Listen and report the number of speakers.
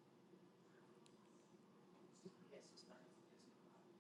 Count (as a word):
zero